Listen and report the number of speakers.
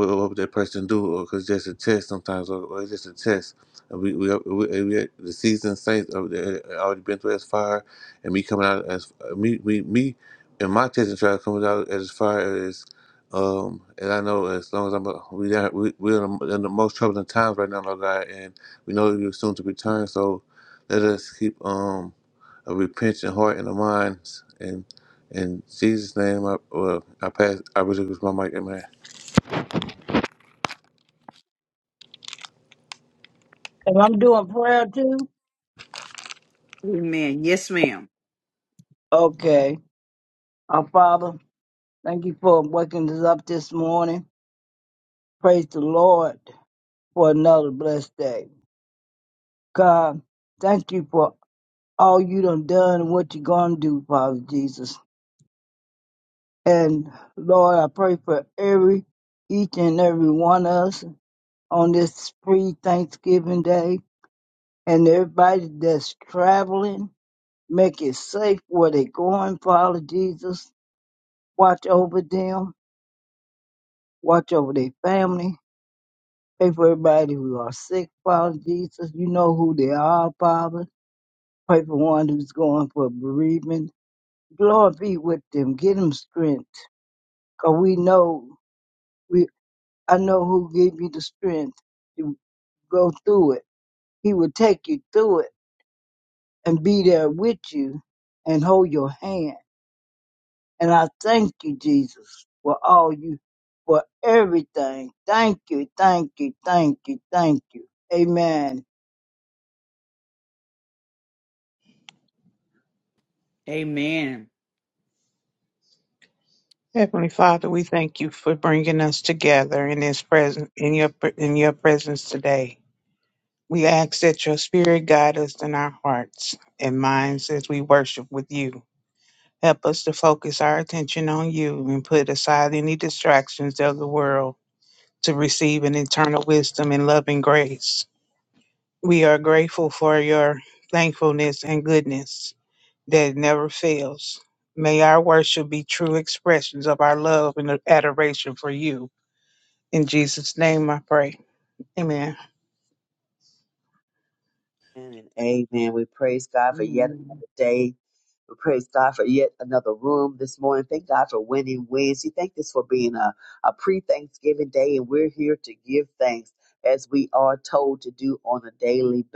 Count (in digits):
5